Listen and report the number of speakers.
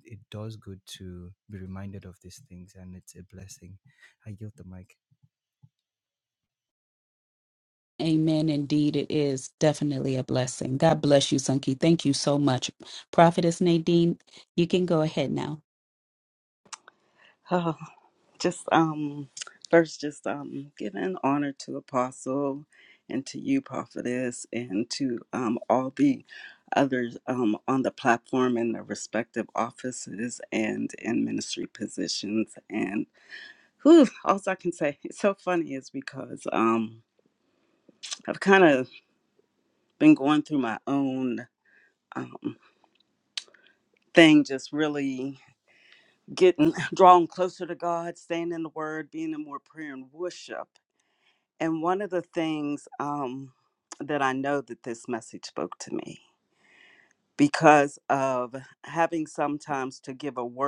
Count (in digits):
3